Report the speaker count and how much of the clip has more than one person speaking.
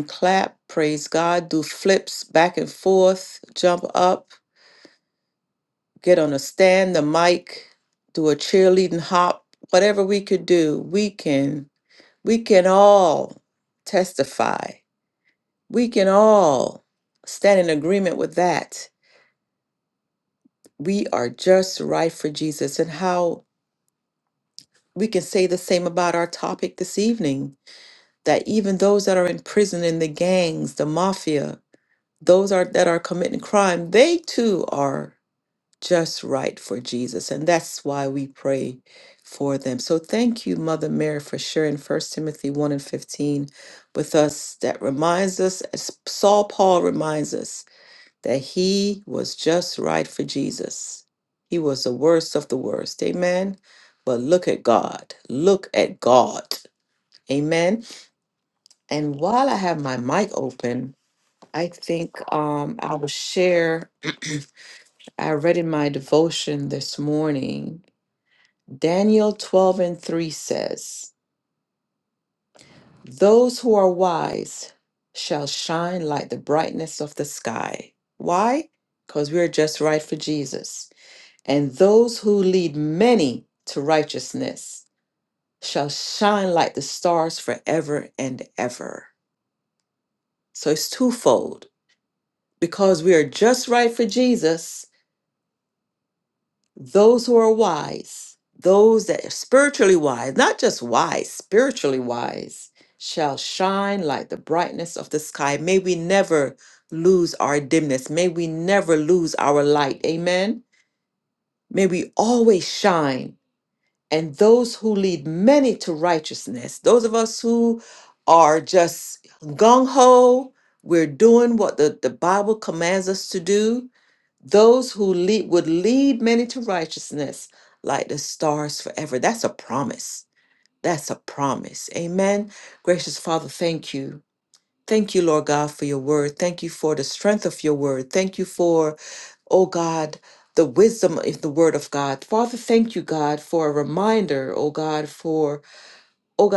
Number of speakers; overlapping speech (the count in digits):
1, no overlap